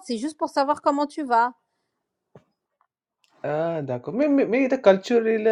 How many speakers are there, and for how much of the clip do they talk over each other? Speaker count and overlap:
2, no overlap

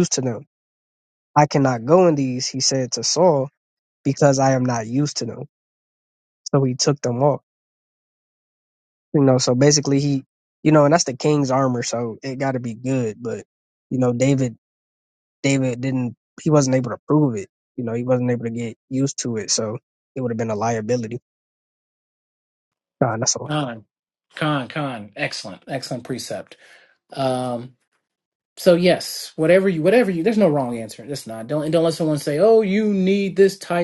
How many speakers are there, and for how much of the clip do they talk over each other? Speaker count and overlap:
2, under 1%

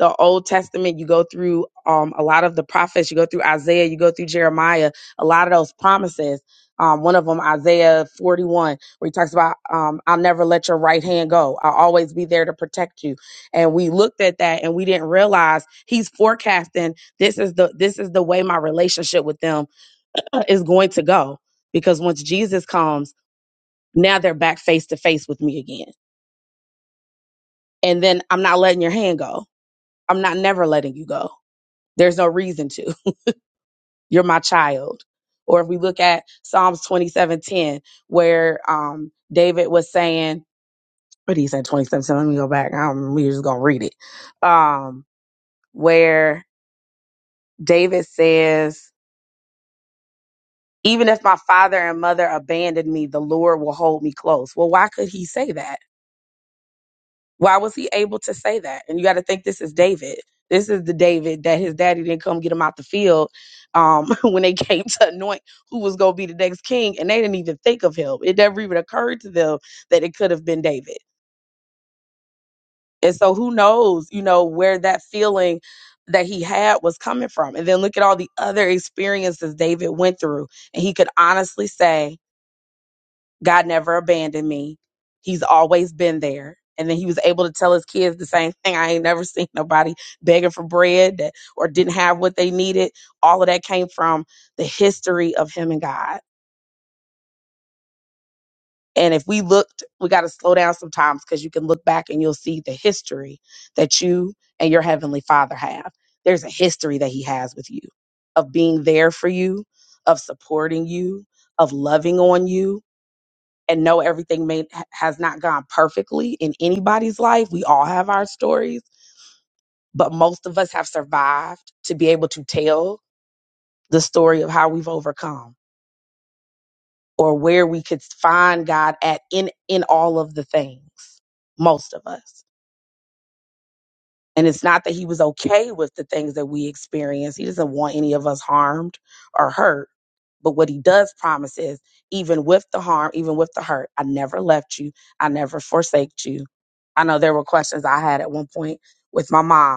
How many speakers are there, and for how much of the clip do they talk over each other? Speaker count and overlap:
1, no overlap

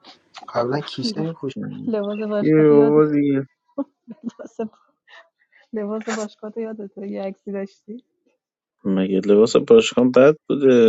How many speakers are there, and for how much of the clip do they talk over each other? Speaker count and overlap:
3, about 6%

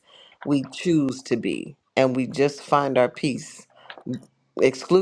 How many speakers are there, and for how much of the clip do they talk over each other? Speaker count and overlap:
1, no overlap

